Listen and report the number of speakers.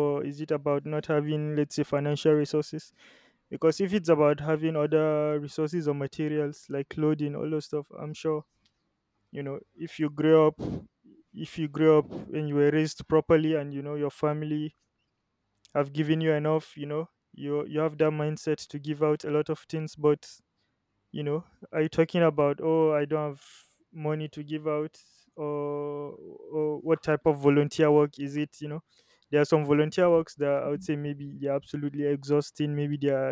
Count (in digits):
1